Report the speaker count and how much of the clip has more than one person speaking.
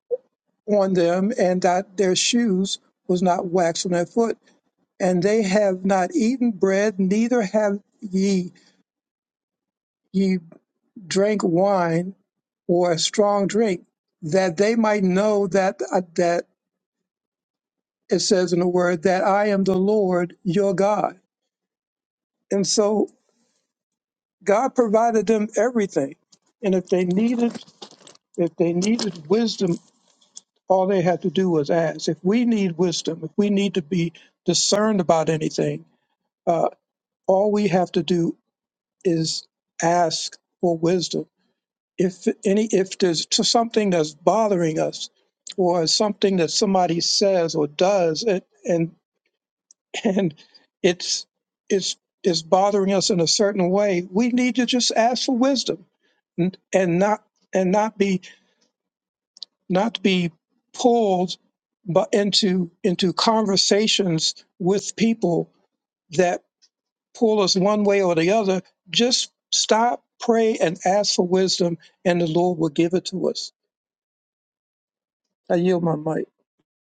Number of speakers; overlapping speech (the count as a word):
one, no overlap